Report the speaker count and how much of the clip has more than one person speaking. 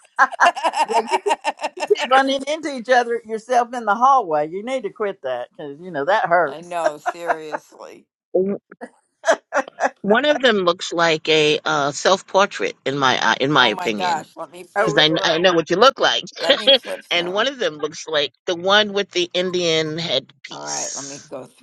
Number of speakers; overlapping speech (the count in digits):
3, about 11%